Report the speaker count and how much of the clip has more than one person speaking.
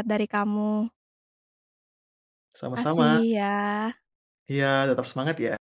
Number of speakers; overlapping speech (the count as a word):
two, about 12%